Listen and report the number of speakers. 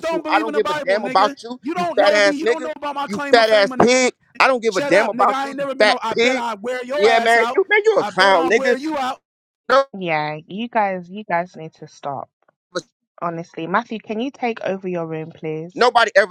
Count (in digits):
3